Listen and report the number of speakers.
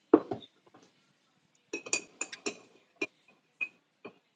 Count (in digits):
0